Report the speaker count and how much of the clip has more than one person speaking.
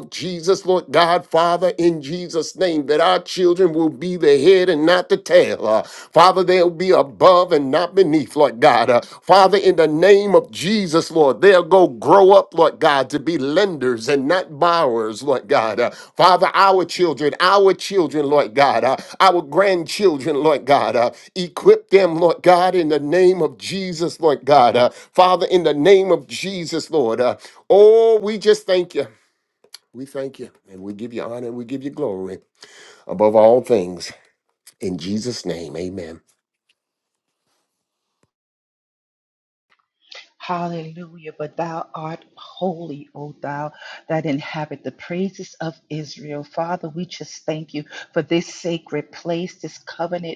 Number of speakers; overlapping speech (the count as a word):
two, no overlap